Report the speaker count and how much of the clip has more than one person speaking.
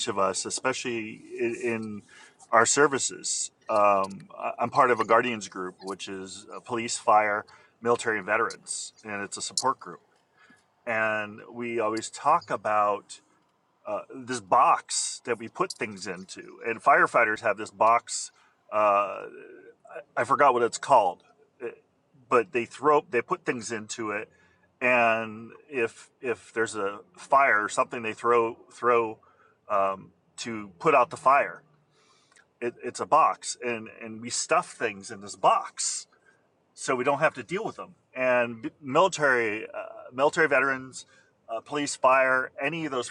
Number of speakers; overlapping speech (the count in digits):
1, no overlap